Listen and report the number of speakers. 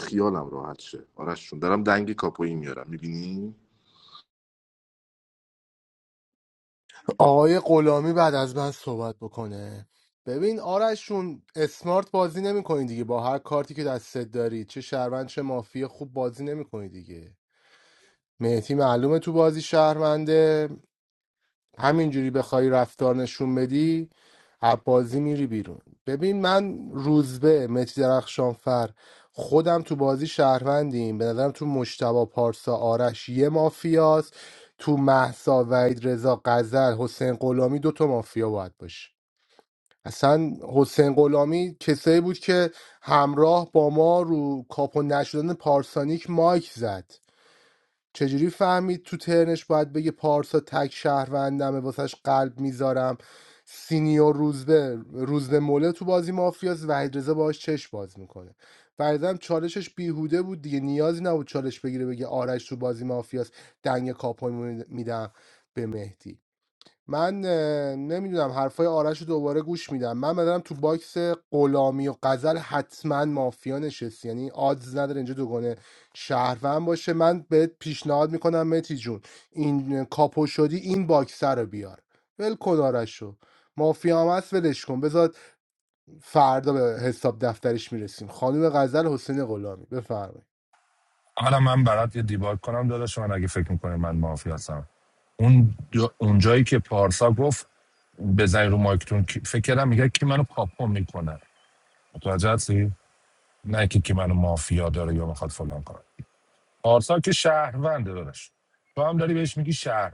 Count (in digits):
3